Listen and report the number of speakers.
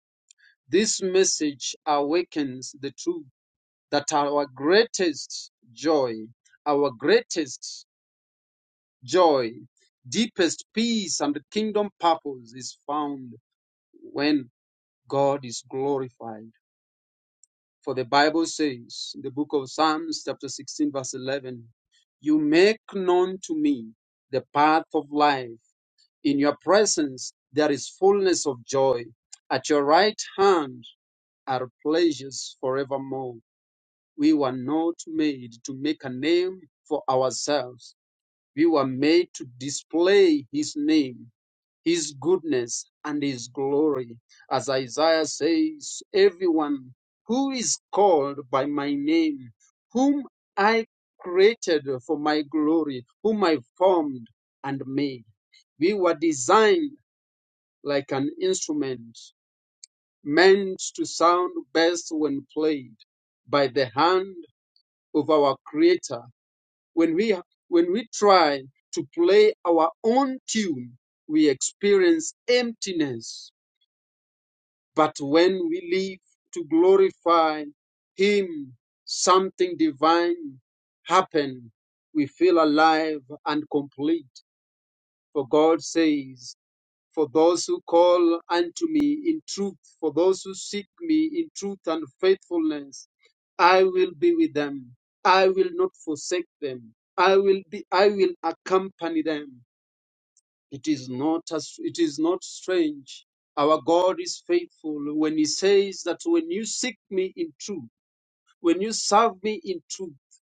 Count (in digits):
1